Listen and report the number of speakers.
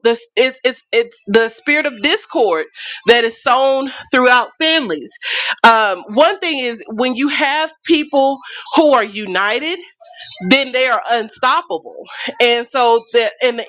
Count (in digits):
1